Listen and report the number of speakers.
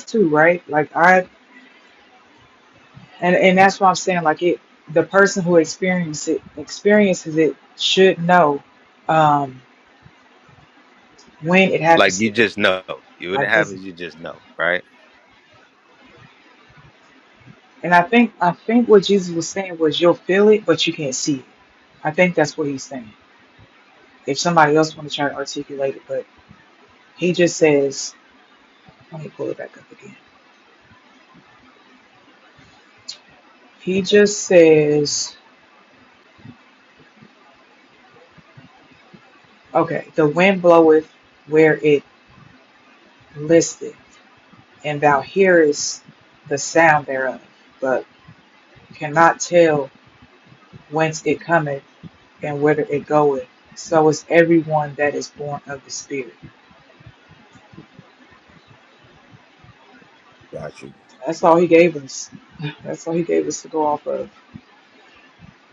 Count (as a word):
two